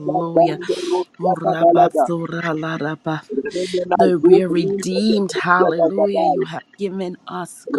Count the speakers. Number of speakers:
two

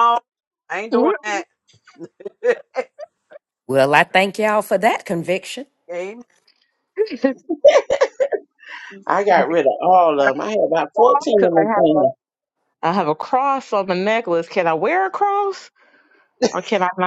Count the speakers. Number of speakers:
four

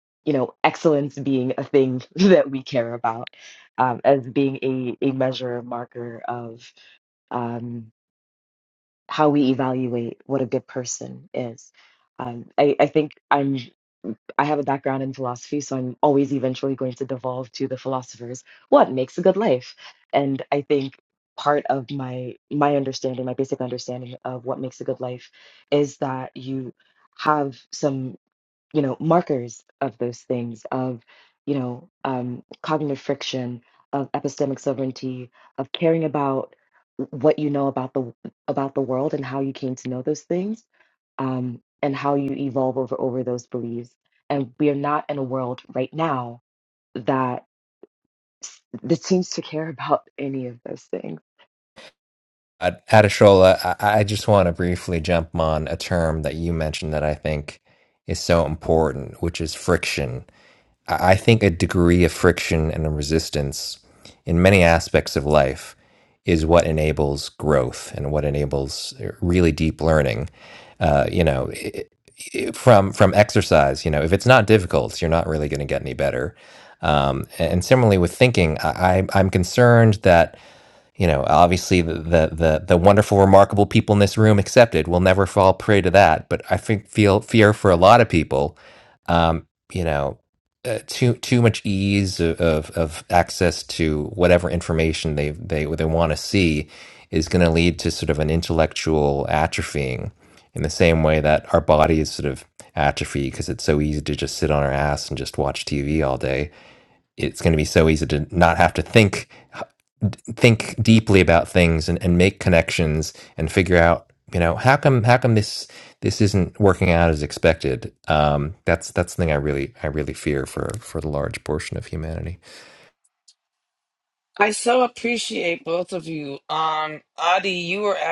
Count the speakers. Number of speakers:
three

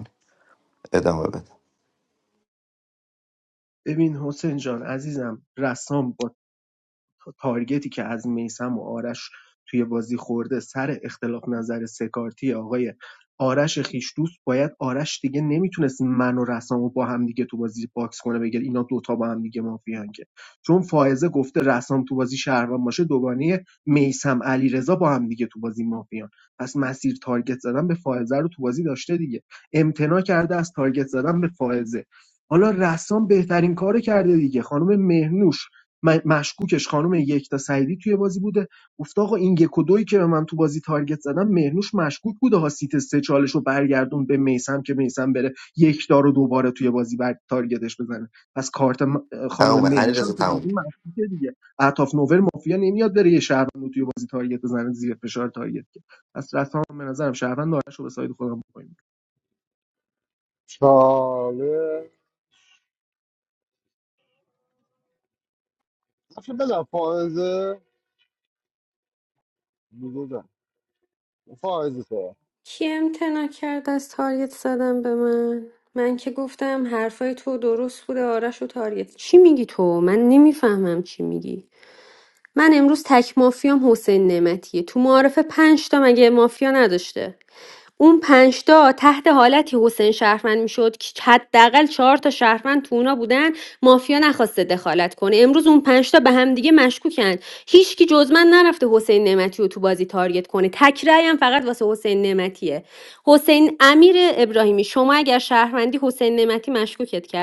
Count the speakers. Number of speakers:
four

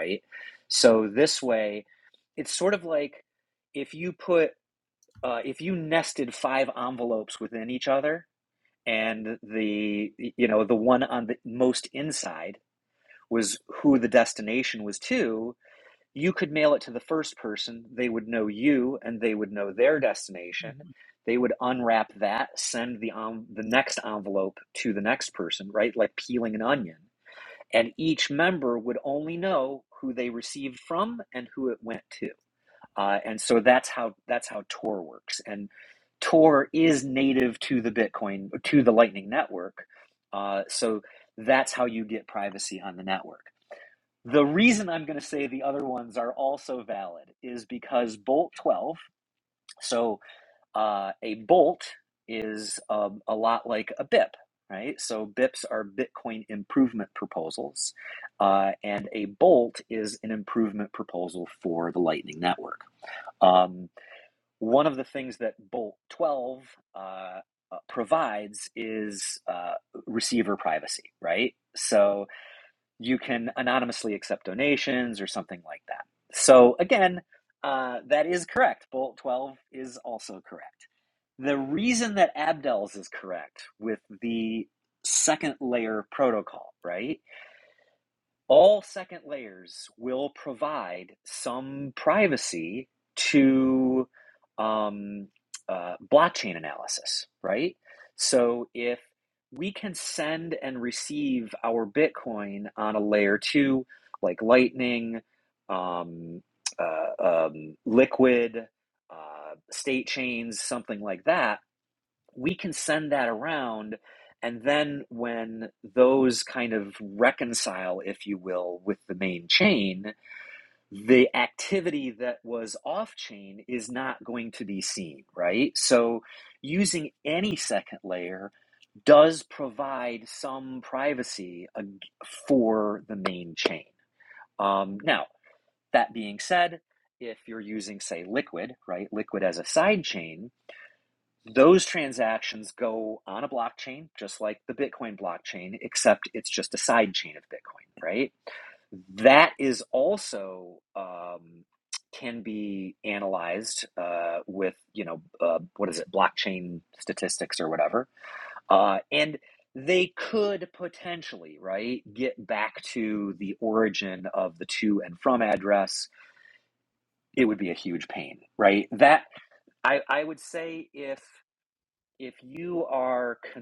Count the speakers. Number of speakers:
one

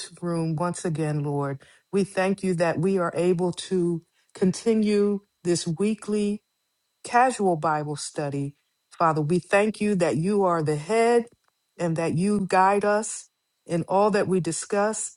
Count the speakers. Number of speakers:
one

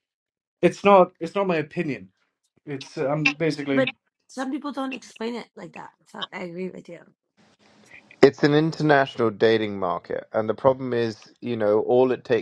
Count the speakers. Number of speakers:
three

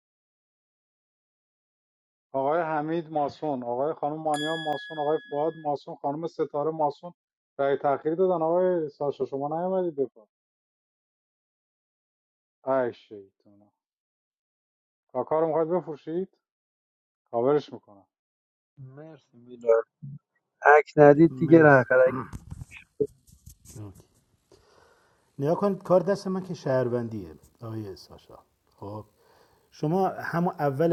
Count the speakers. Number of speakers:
three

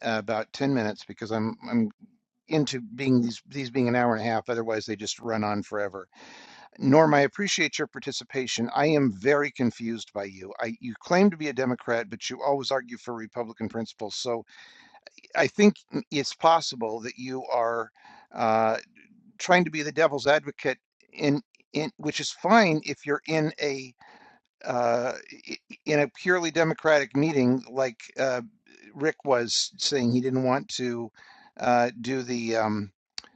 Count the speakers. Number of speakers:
one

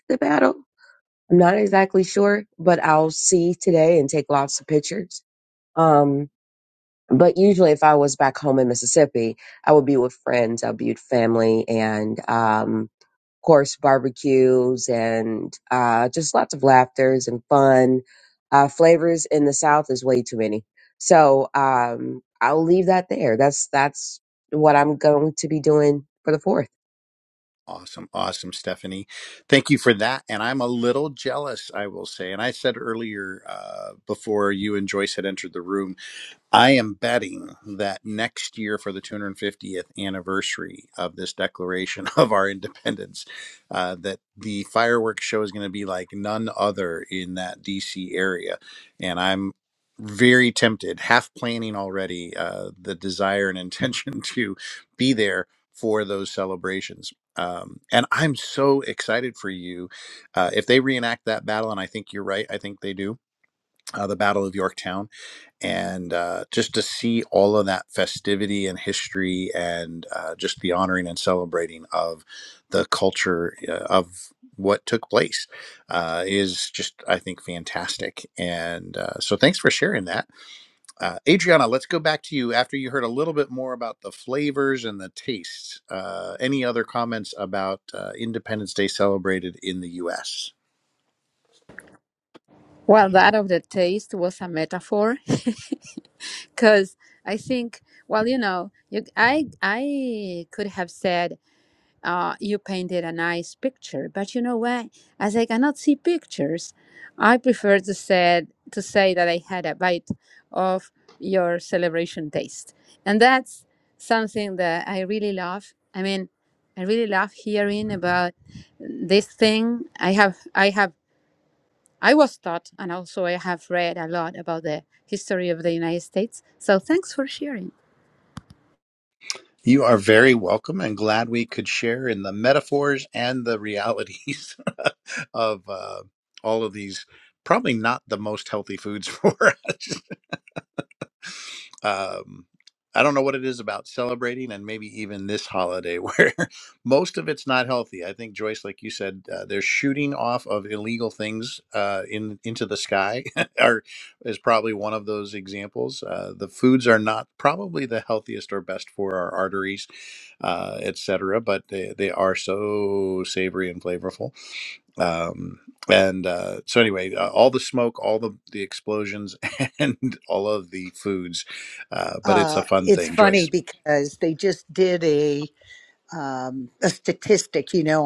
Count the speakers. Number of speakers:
four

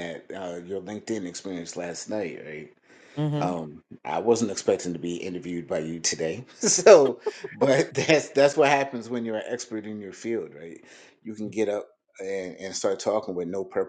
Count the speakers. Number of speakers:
one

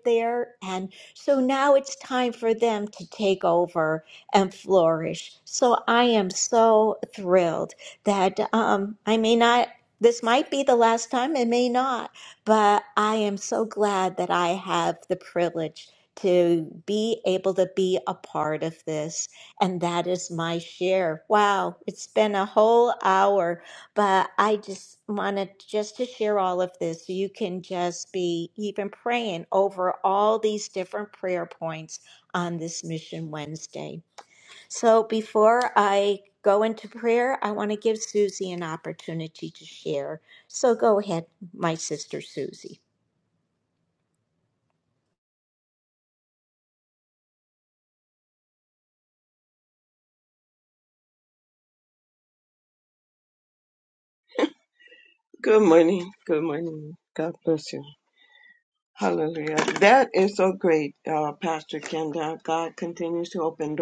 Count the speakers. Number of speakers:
two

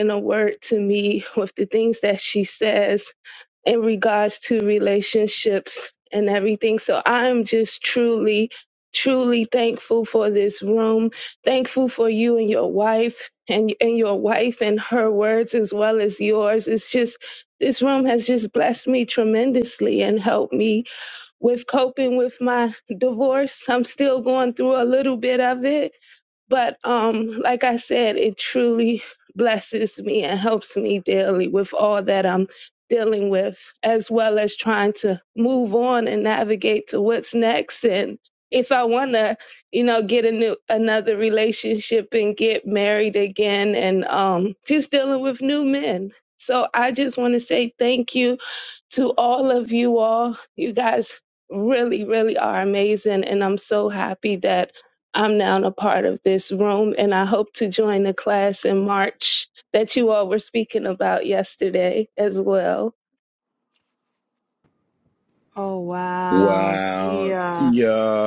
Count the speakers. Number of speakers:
three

